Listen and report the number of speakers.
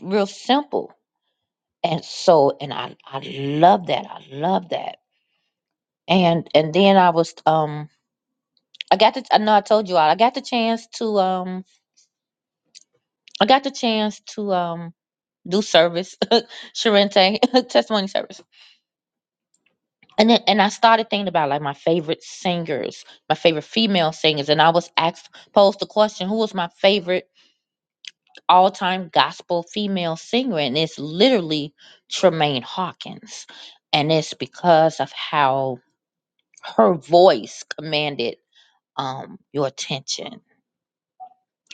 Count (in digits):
1